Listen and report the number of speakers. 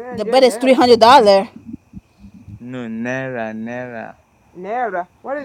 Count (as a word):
three